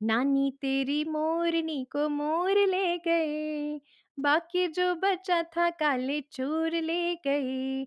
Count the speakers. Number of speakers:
one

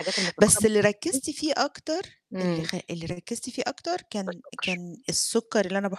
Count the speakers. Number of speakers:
two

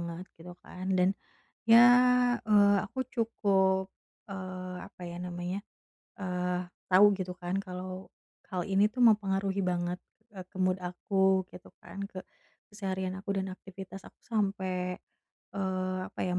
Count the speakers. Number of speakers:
one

